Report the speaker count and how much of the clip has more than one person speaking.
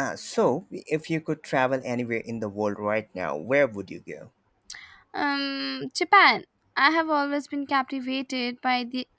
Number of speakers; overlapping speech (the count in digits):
2, no overlap